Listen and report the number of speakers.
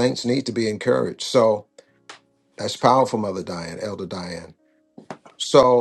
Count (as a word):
one